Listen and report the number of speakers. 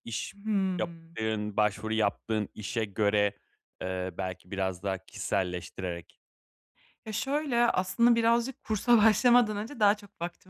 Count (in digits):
2